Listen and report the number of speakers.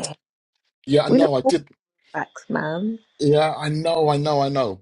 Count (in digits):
2